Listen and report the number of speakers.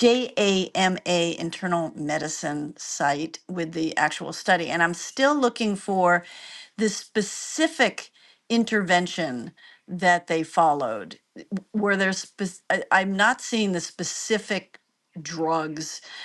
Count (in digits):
1